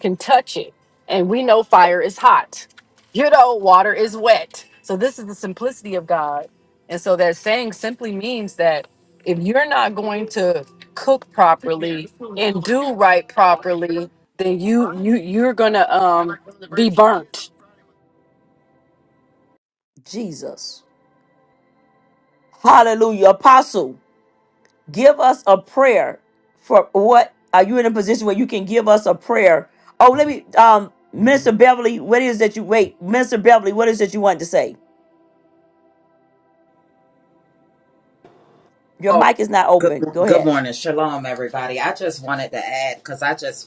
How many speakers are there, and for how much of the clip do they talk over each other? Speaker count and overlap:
three, about 2%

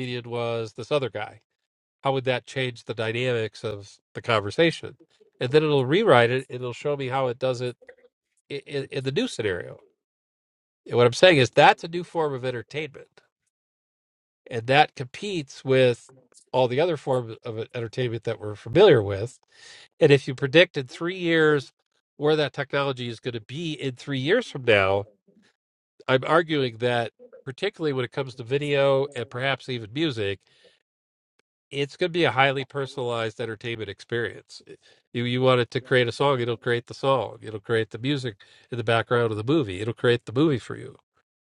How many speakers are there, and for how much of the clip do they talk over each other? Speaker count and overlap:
one, no overlap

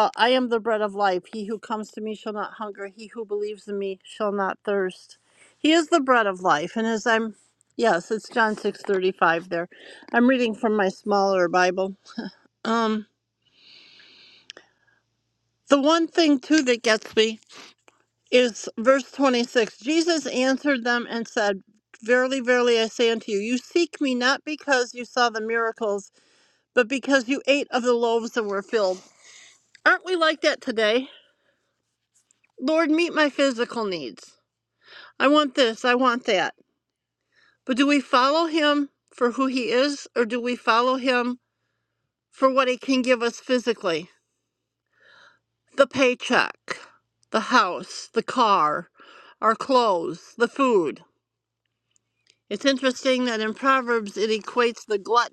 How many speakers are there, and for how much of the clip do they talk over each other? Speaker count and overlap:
one, no overlap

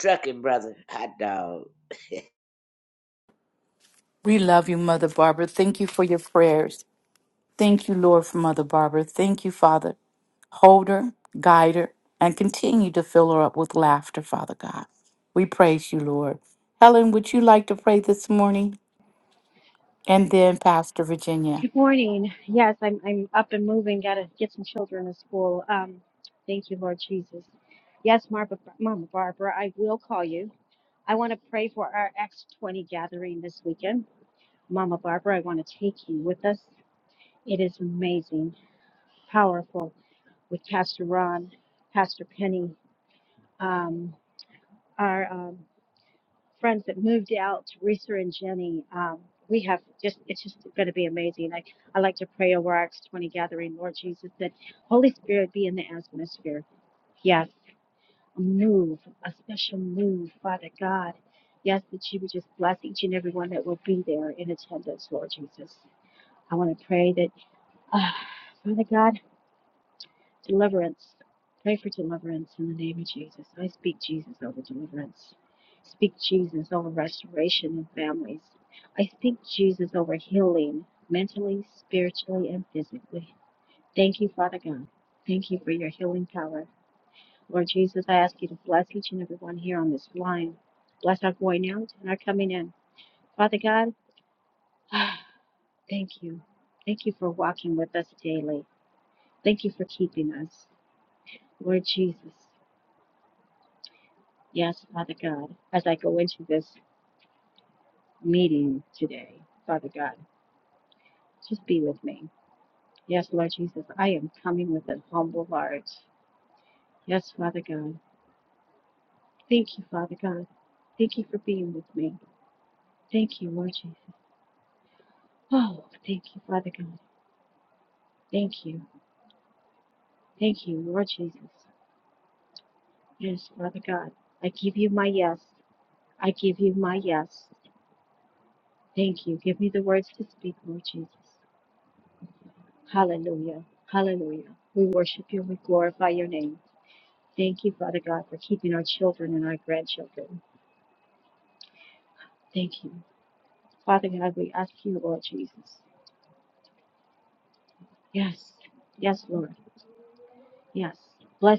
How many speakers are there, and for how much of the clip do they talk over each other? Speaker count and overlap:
three, under 1%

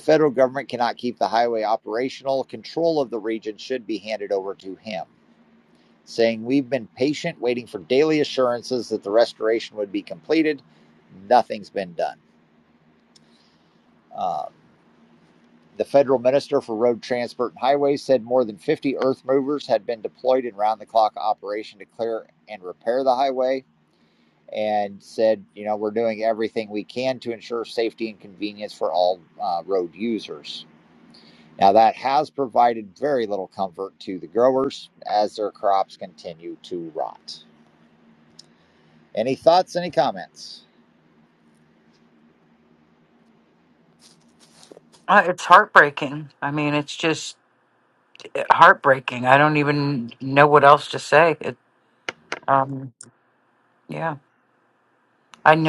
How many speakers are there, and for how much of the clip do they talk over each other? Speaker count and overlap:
two, no overlap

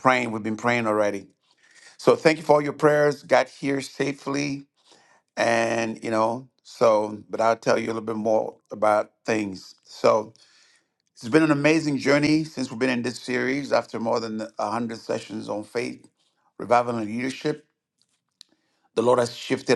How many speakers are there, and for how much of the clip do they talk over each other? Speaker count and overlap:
one, no overlap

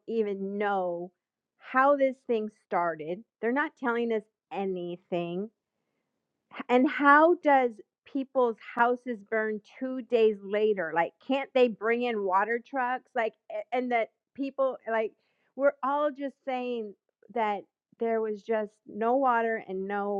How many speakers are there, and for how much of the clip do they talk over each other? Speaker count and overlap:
one, no overlap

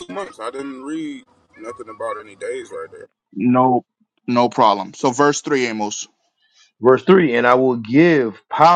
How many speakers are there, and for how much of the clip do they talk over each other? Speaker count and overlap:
three, no overlap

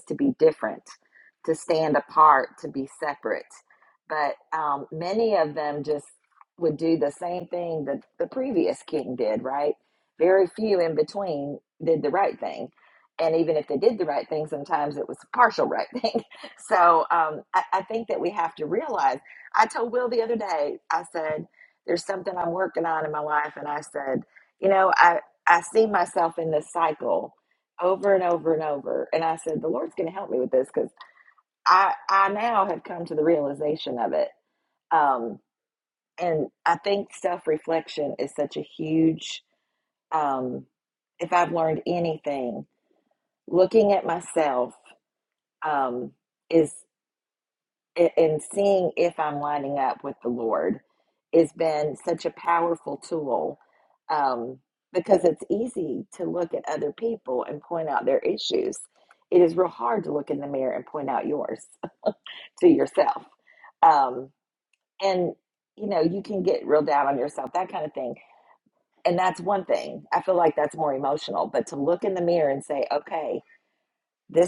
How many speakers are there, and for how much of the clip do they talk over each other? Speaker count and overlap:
one, no overlap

